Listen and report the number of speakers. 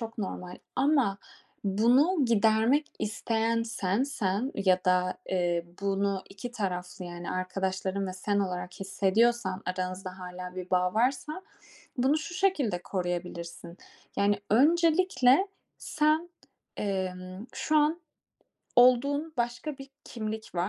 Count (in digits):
1